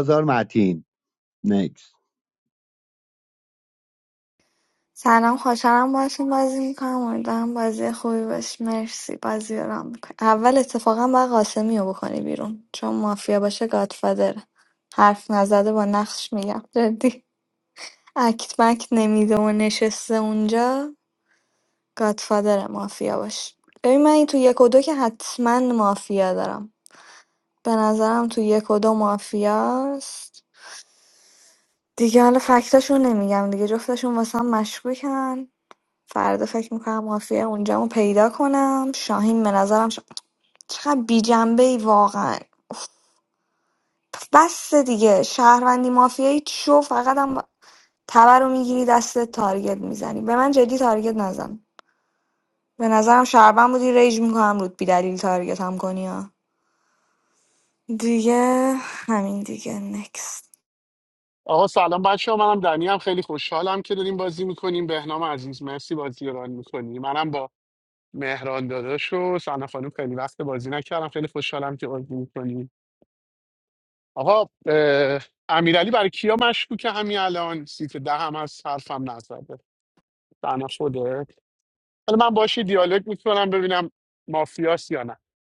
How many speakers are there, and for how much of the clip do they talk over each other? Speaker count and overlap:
3, no overlap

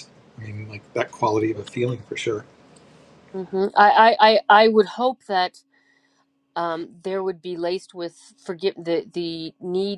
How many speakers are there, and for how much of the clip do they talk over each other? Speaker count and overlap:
2, no overlap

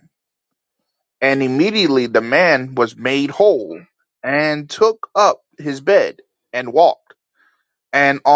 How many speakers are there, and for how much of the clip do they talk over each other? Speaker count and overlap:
1, no overlap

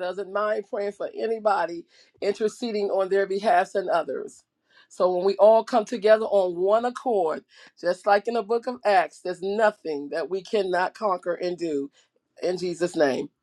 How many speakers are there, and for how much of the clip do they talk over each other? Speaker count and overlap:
1, no overlap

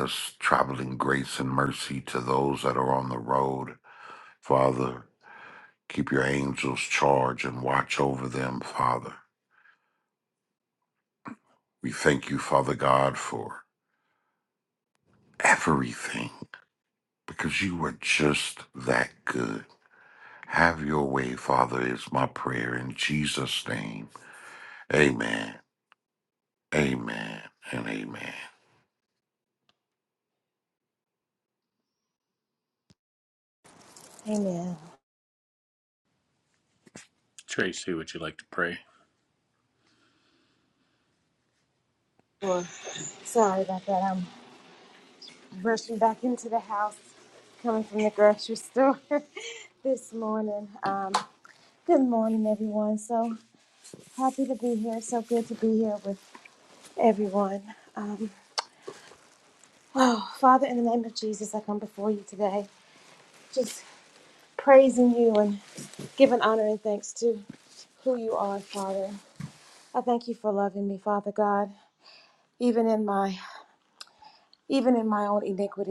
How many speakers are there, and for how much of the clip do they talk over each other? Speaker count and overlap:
3, no overlap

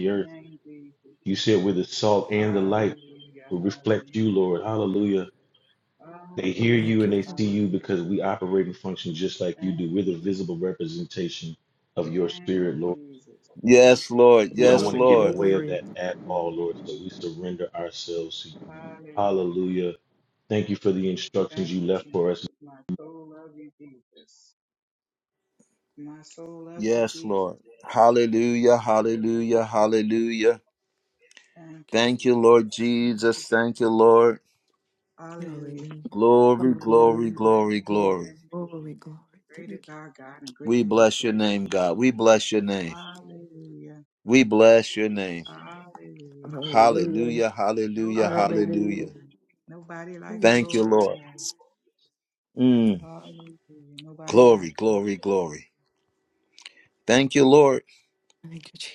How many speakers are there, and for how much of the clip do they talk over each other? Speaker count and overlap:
4, about 35%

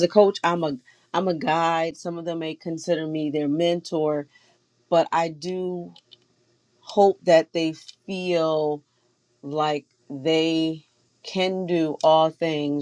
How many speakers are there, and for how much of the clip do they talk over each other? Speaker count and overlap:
1, no overlap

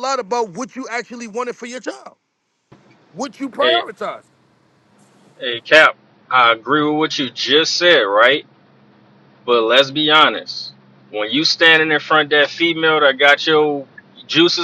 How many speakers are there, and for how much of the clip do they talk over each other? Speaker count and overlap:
2, about 2%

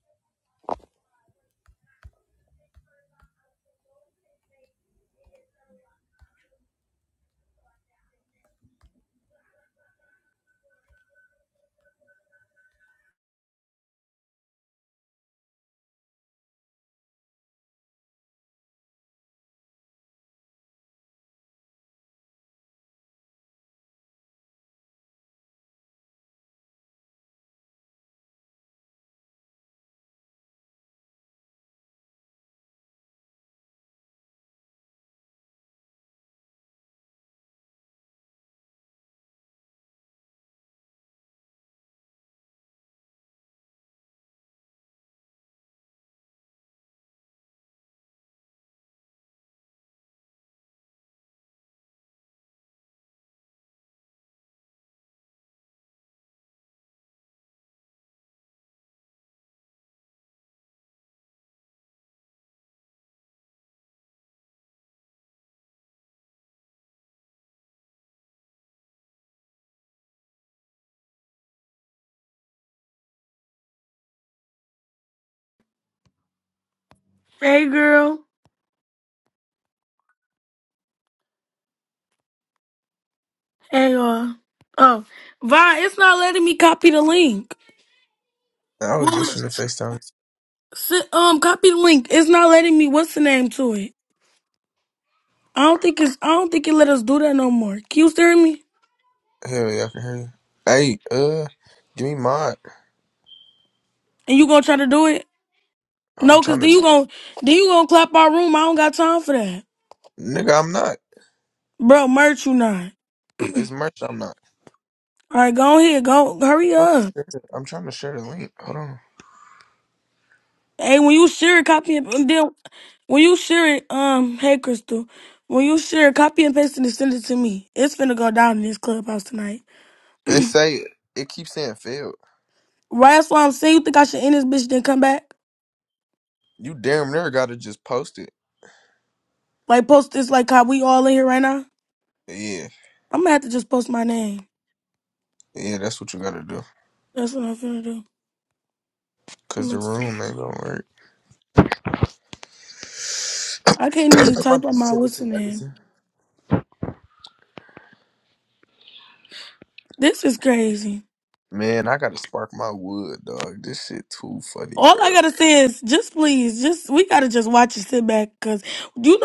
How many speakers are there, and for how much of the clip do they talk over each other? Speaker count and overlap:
2, about 2%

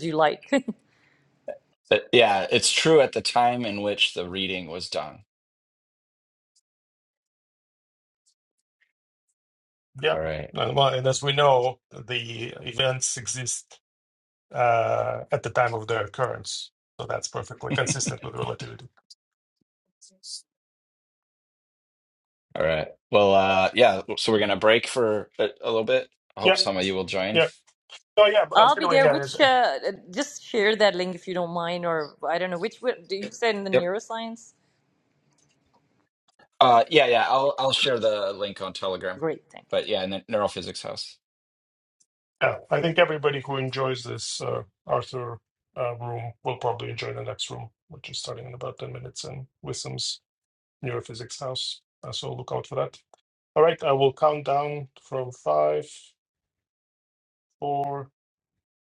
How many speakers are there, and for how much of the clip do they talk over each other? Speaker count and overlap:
3, about 2%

